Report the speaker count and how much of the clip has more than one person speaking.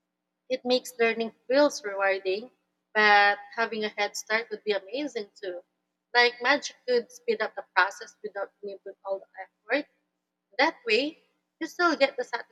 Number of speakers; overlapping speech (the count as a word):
one, no overlap